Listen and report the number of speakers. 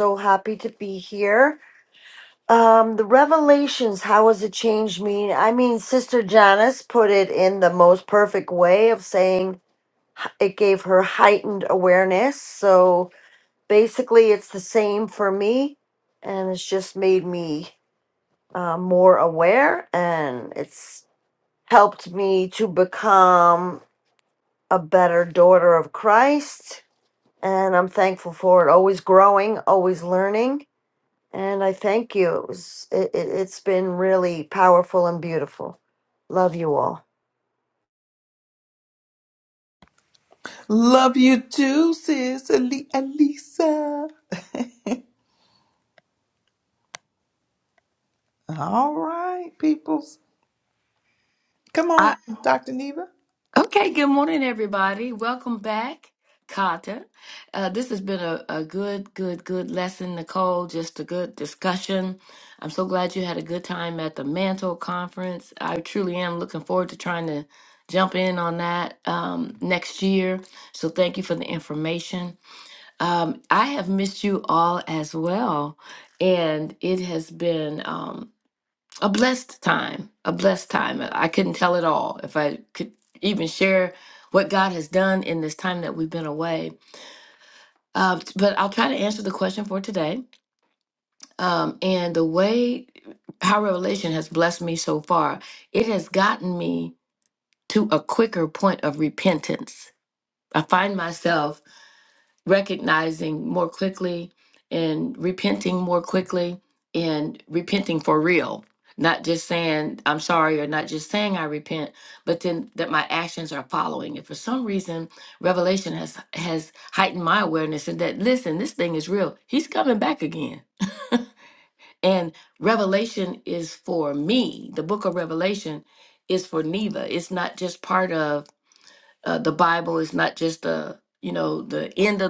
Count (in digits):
3